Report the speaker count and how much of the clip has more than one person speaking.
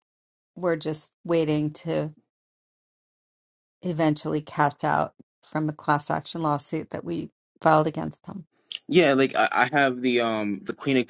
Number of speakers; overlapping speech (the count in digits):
2, no overlap